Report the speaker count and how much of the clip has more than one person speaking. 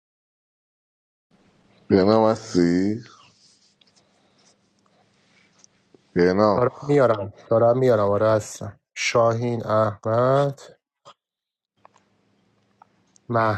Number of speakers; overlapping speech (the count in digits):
2, about 1%